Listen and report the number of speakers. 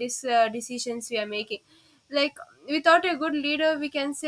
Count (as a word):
one